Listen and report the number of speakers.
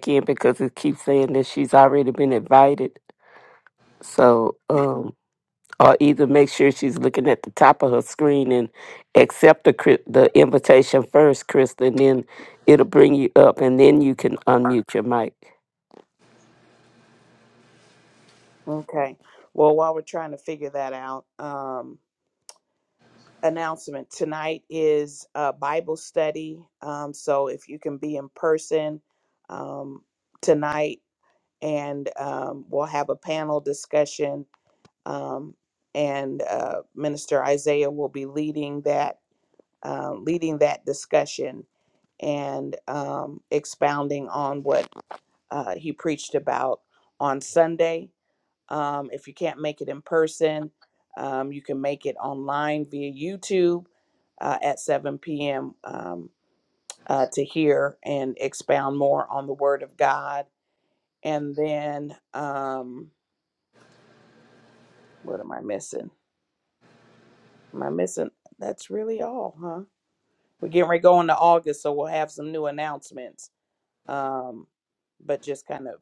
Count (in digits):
2